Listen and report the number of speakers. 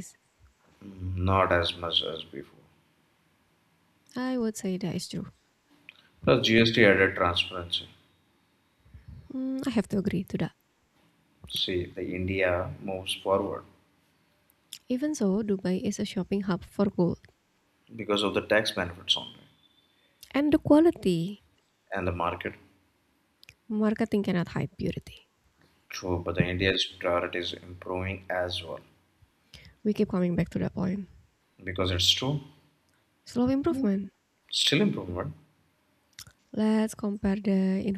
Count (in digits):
2